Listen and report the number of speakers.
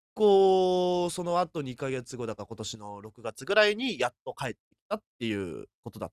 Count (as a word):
one